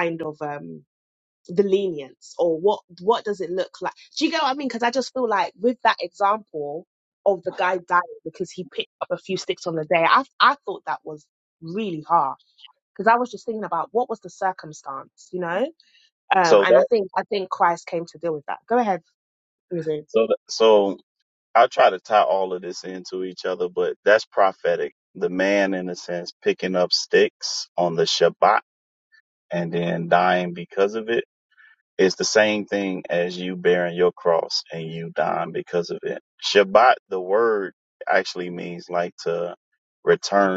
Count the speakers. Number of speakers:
2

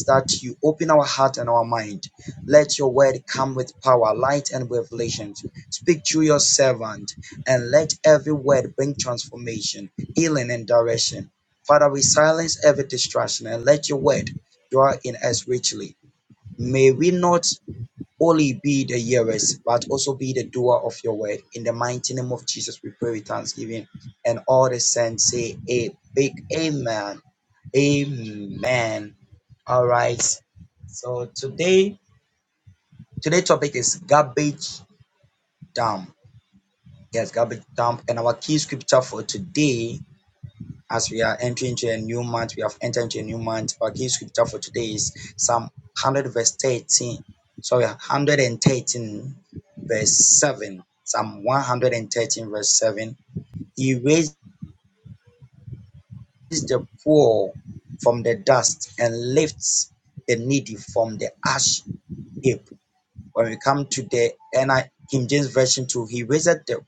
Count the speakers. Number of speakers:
1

